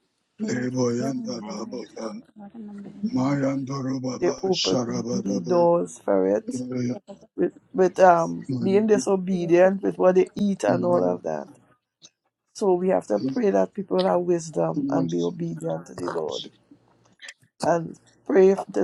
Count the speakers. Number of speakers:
3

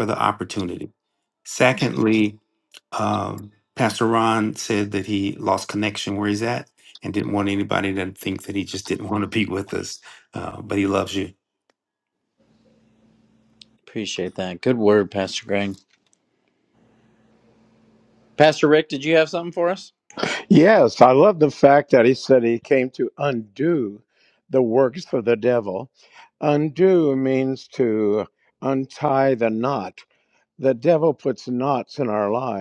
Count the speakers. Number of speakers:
3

